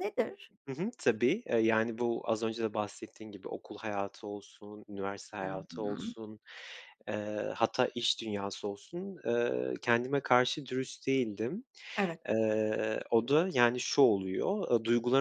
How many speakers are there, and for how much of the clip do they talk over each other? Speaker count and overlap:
2, about 5%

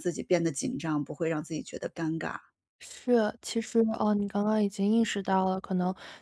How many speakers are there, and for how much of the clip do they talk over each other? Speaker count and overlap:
2, no overlap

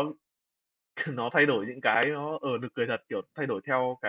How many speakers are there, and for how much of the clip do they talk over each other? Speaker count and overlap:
1, no overlap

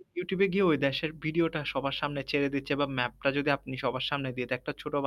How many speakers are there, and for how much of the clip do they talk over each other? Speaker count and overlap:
1, no overlap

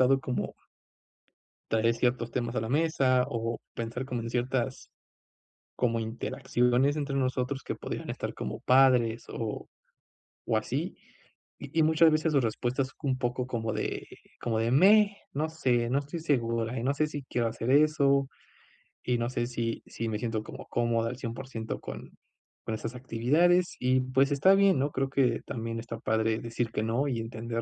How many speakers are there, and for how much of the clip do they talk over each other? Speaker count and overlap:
1, no overlap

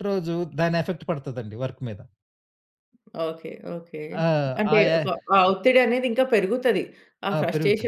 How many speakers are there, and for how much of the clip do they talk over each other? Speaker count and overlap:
2, about 11%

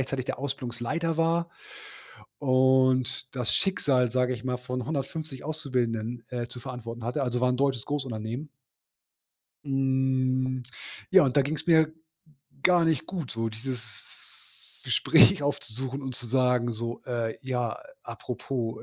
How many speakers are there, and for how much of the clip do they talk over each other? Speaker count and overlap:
1, no overlap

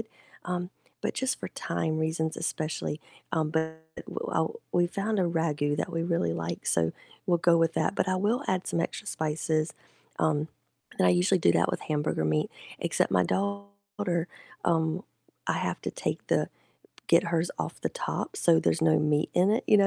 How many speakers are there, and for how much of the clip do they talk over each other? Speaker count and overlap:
1, no overlap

